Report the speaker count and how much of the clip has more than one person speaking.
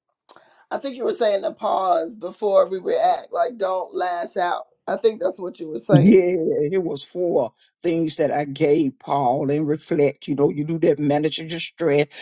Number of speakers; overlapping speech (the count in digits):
2, about 2%